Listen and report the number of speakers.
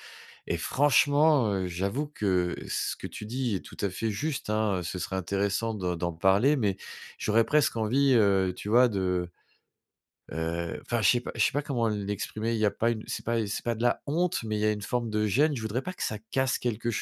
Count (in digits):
1